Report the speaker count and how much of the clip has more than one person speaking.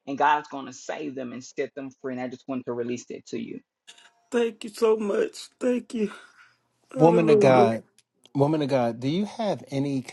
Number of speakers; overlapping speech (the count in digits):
3, about 7%